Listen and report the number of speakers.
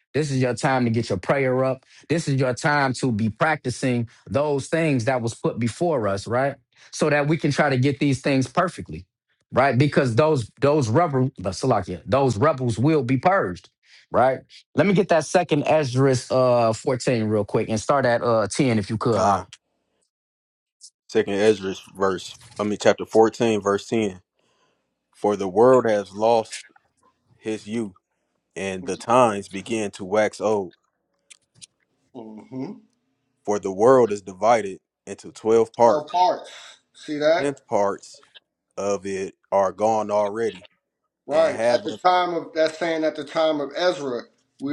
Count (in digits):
3